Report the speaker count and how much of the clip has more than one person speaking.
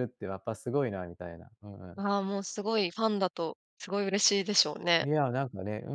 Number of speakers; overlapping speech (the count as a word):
two, about 1%